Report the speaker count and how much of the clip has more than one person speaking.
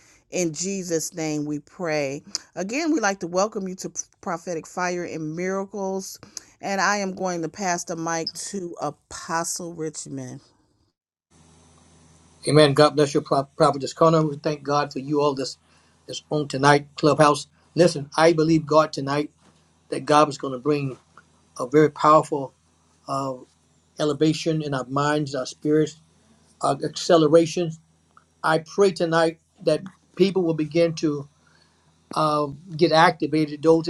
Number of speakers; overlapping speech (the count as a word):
two, no overlap